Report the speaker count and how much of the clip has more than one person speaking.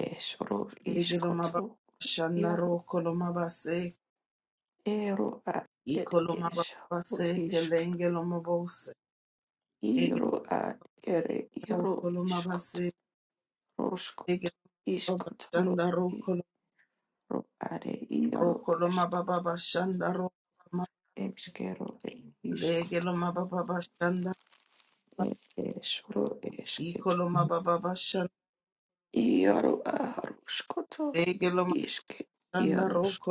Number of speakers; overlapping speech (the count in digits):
2, about 19%